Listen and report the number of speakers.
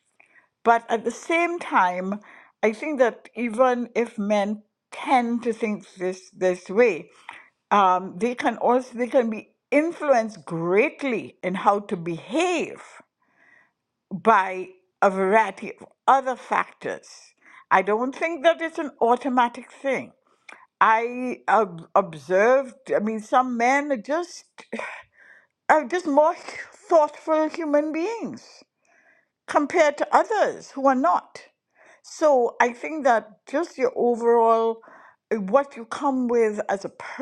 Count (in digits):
1